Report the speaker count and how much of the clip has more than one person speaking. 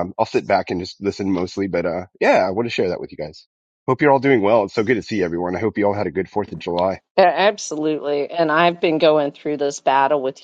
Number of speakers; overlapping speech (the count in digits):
2, no overlap